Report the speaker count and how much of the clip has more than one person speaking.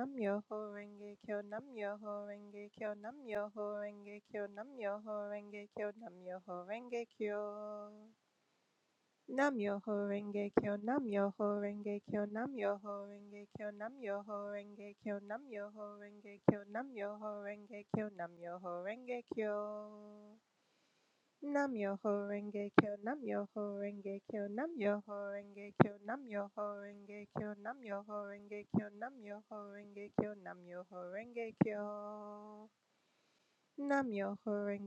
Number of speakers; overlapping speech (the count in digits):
1, no overlap